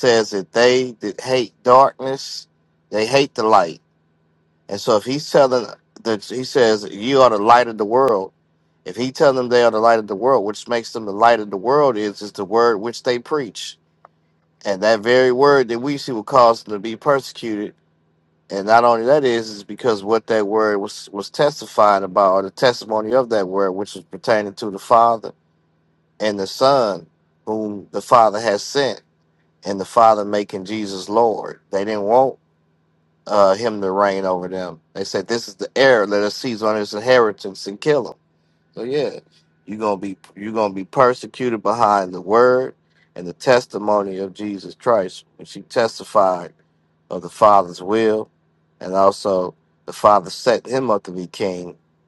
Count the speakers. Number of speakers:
1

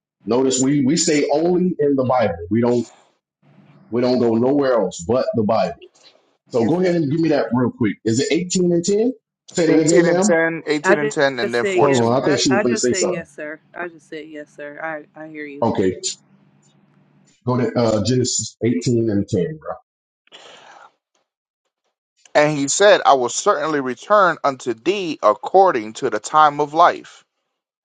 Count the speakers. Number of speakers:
3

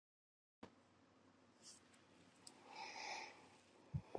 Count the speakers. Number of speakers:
0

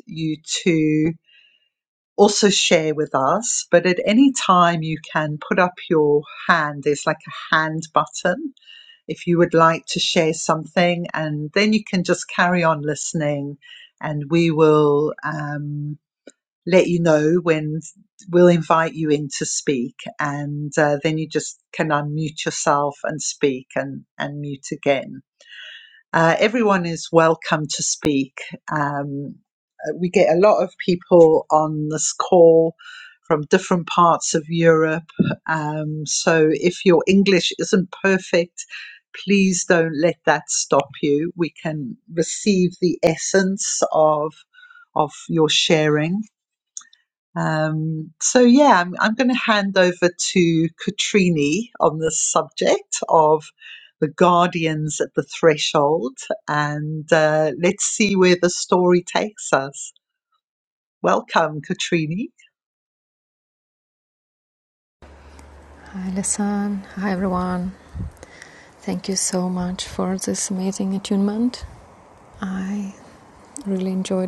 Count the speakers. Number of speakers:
2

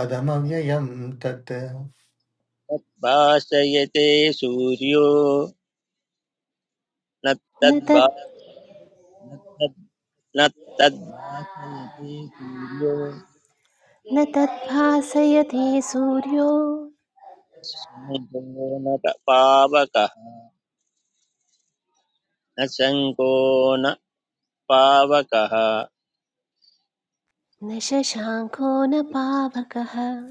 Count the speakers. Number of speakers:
3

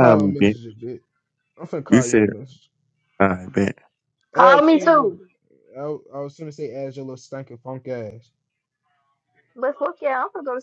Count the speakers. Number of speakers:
3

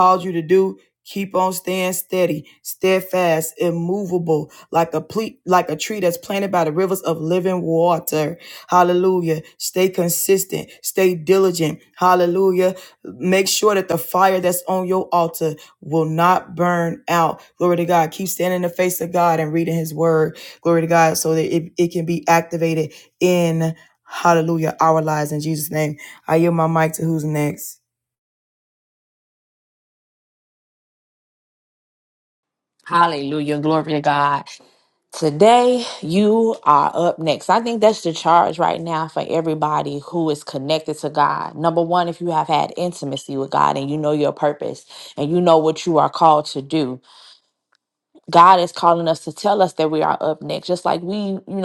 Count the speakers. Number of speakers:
2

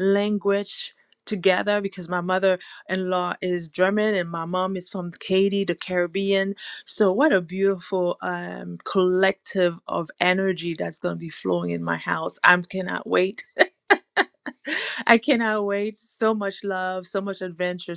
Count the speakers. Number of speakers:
1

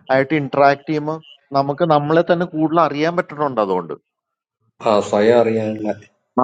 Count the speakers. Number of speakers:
2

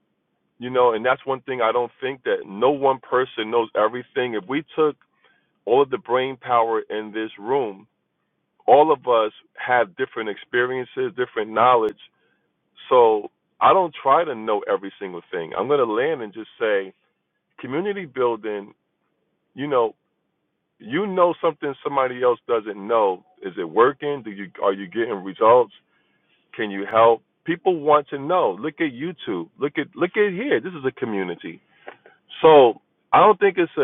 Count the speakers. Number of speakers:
1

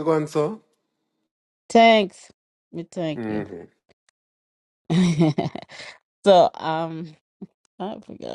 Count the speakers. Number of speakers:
2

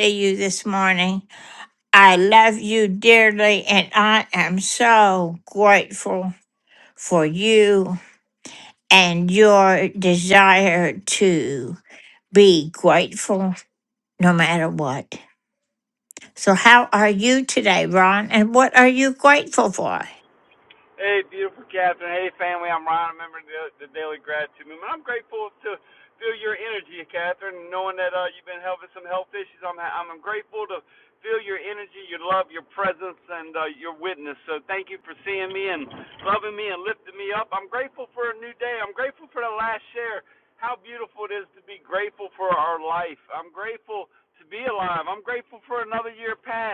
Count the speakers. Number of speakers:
2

